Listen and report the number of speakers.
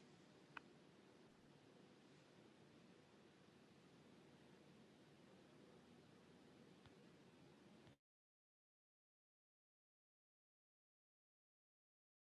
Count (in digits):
0